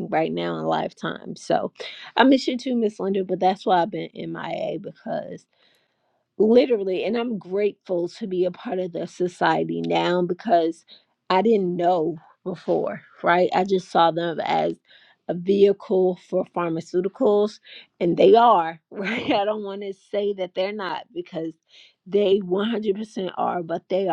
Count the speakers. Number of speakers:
1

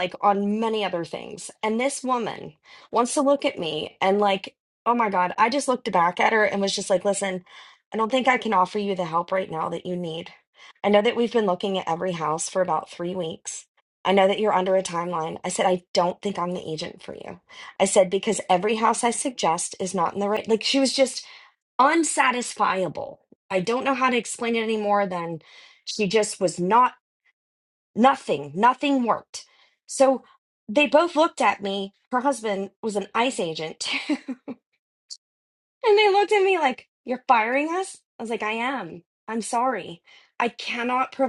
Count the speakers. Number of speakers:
1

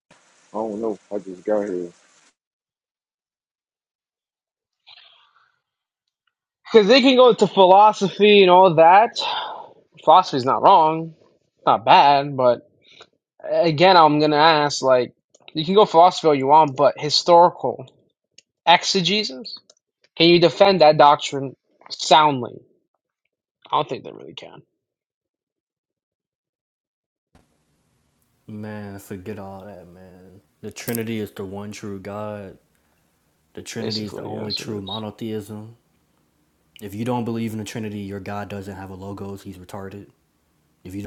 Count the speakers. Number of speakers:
3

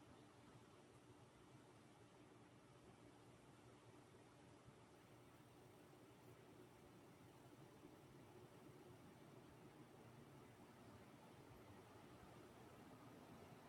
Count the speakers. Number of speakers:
0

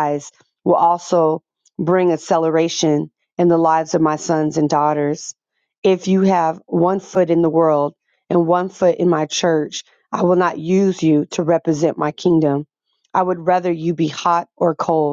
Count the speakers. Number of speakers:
1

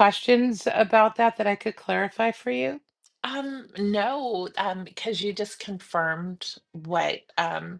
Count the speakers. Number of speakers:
2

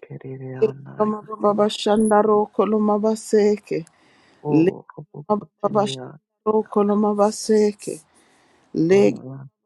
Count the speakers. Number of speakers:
2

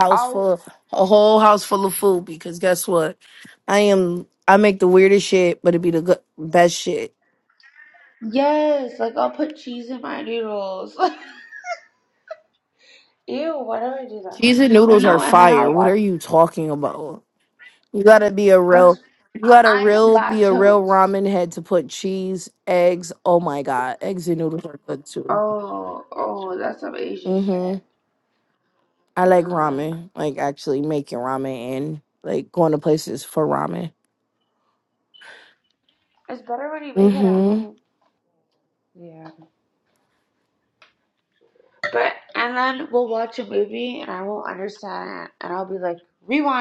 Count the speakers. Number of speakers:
2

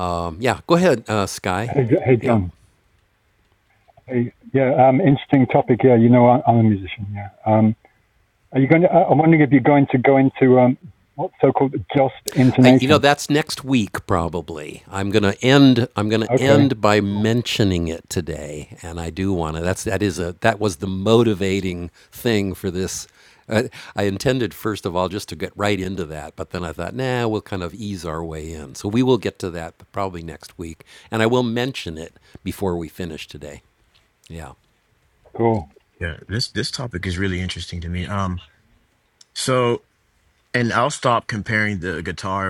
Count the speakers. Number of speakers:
3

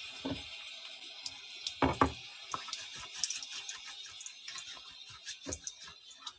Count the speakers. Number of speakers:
0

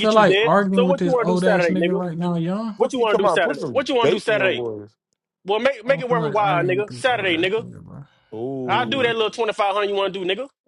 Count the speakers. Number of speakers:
3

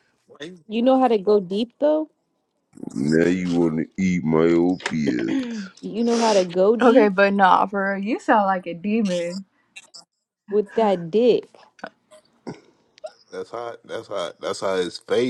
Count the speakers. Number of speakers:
4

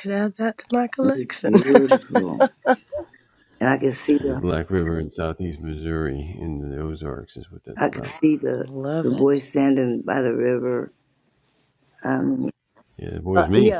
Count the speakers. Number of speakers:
3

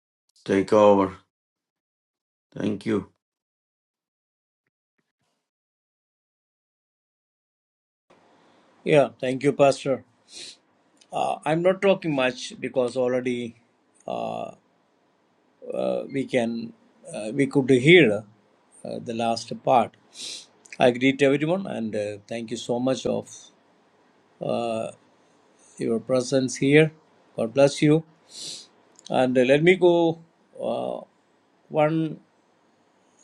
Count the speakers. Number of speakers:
2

